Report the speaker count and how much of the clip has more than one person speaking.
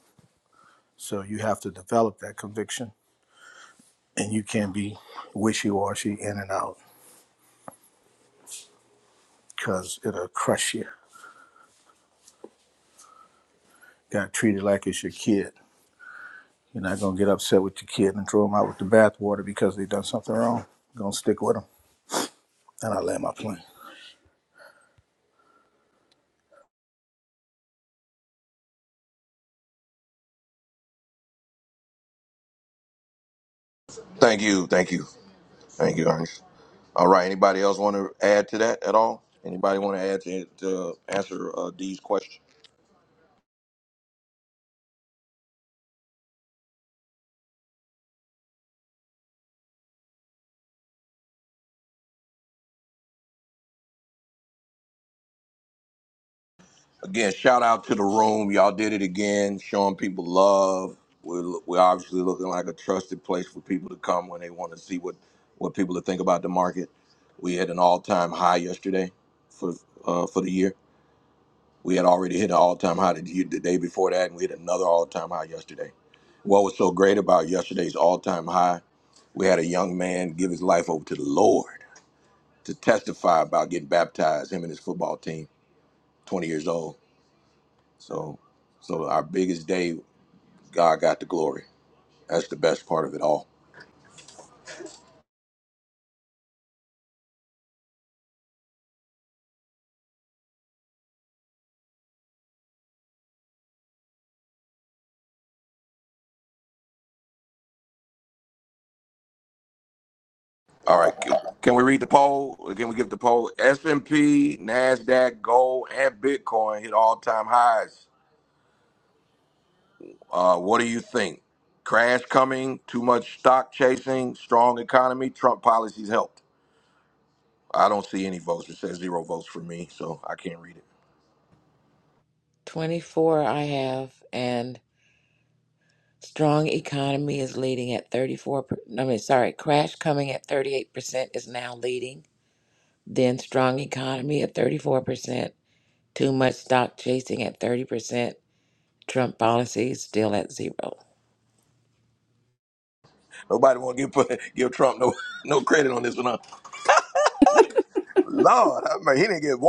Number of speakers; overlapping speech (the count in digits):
3, no overlap